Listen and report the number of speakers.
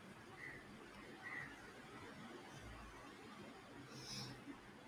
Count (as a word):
zero